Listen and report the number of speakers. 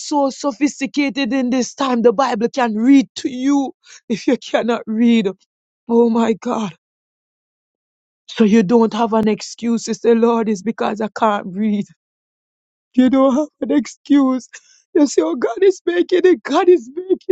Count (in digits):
1